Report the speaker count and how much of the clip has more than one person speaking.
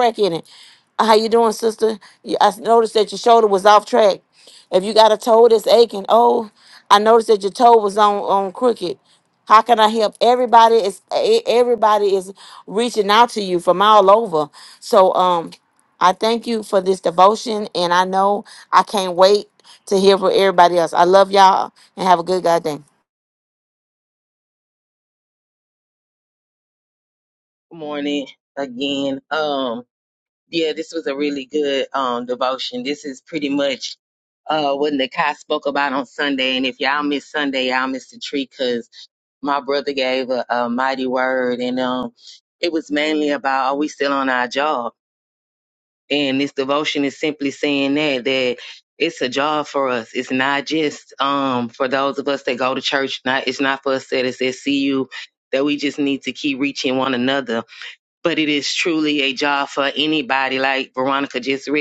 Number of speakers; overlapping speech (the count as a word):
two, no overlap